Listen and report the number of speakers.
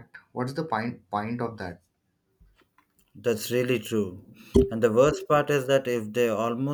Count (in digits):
2